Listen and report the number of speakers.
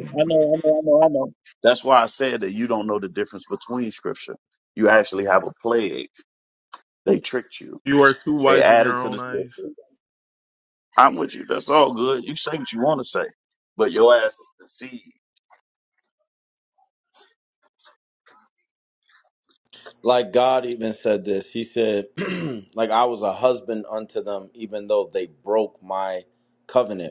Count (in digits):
3